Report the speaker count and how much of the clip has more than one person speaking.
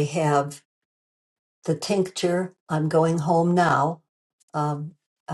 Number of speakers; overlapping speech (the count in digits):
1, no overlap